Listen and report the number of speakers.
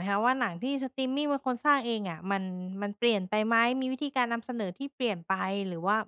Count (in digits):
1